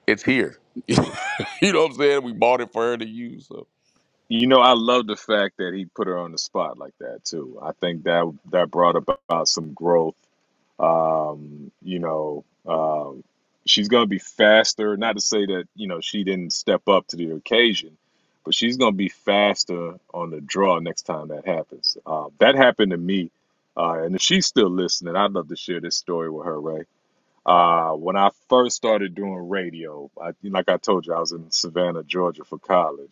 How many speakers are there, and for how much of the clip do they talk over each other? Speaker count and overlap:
2, no overlap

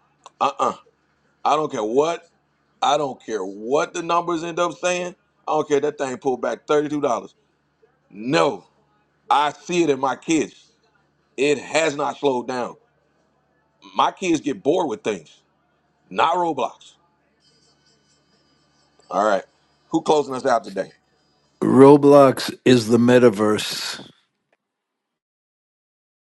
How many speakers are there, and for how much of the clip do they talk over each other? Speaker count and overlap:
2, no overlap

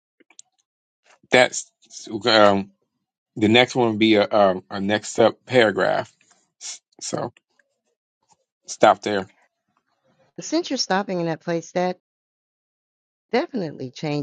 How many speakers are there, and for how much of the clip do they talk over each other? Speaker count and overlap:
2, no overlap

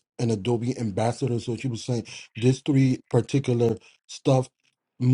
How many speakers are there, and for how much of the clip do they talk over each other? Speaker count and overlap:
1, no overlap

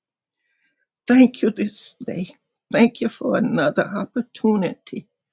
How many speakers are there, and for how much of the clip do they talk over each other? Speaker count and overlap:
1, no overlap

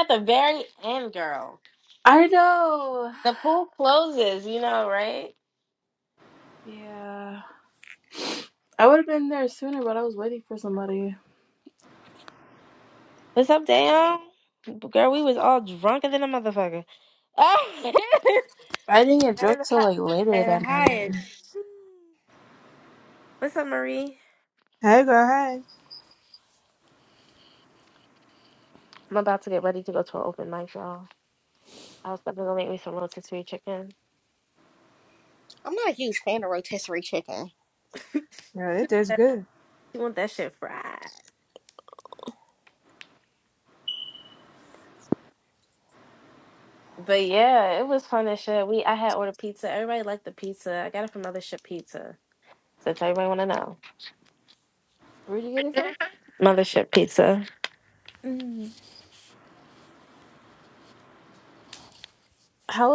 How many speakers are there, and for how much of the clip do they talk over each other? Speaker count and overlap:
4, about 2%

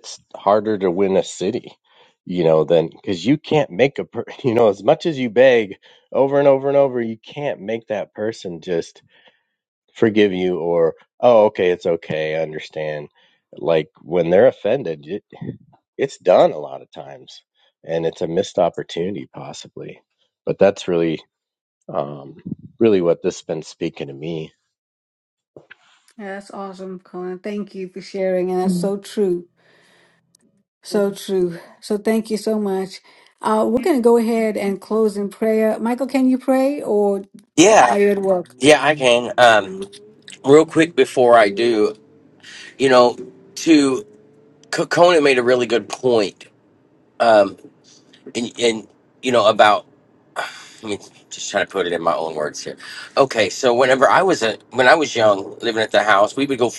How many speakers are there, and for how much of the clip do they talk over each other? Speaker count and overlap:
3, under 1%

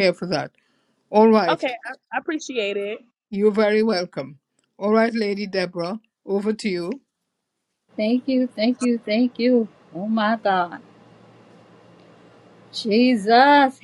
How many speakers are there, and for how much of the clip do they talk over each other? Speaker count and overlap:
3, under 1%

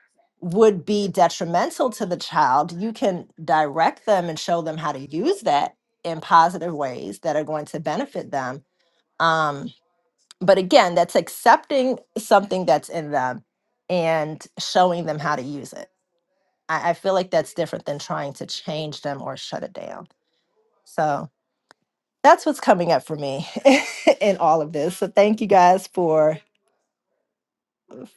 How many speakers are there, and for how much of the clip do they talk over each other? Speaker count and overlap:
1, no overlap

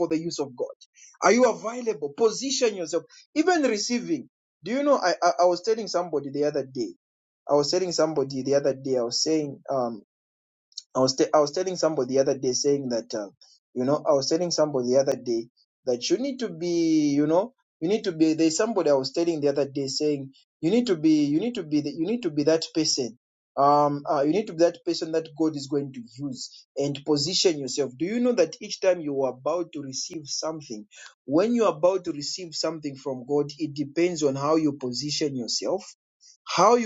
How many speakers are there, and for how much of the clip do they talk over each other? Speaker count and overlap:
1, no overlap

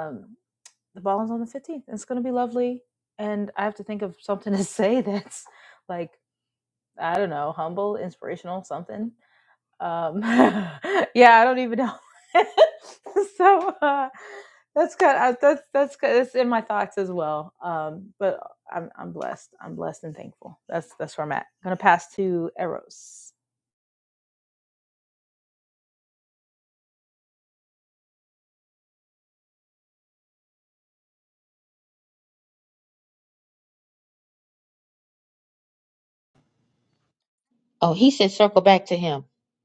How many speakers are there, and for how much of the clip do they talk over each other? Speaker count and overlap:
2, no overlap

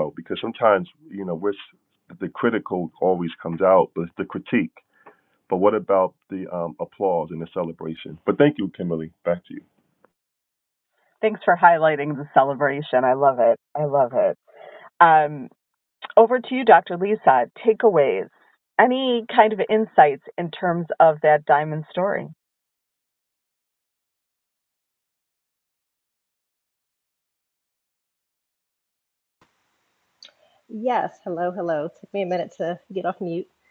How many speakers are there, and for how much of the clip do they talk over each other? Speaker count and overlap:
3, no overlap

